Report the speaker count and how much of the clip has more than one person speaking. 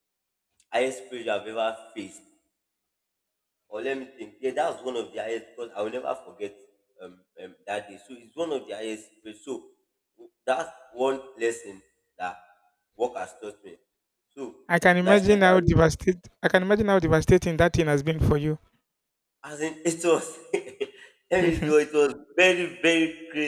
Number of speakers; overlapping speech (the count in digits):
2, about 2%